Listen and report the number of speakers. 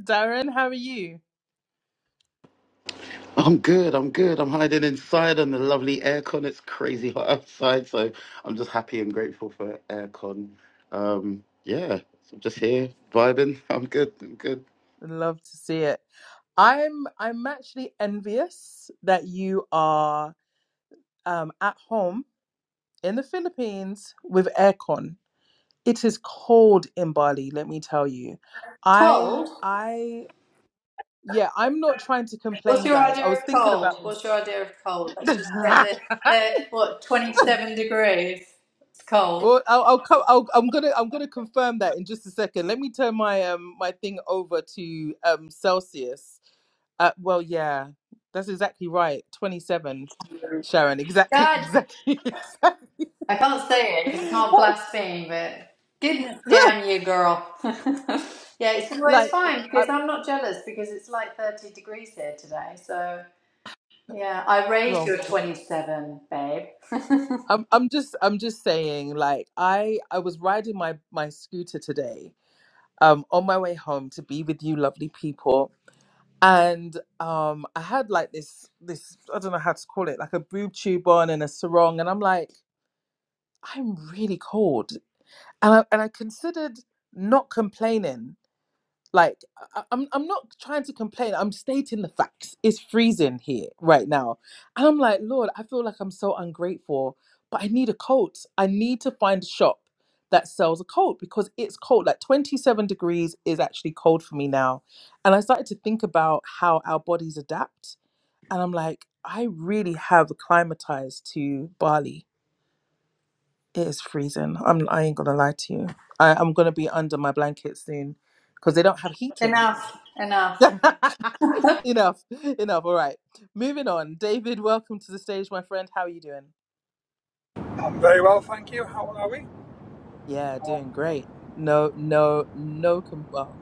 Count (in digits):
4